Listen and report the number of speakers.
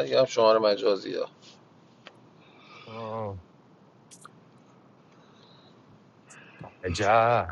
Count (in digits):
2